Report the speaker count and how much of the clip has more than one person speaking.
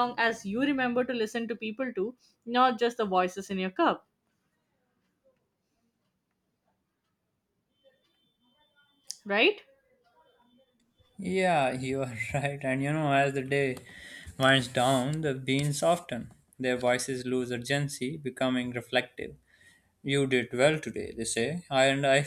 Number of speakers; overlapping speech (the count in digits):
2, no overlap